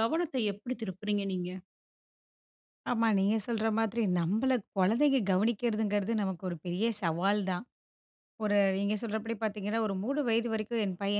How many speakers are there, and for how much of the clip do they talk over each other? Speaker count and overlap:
2, no overlap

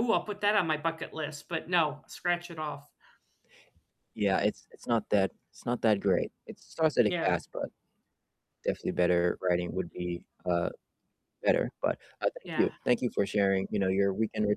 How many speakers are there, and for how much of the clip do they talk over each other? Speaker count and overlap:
2, about 4%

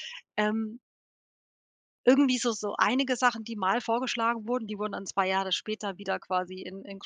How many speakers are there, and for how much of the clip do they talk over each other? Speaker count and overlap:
1, no overlap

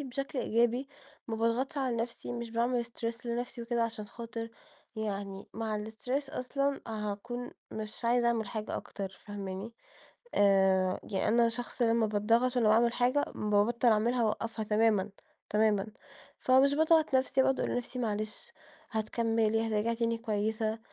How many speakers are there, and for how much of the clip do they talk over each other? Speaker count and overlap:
1, no overlap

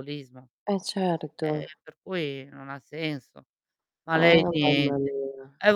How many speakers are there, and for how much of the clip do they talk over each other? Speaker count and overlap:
2, about 20%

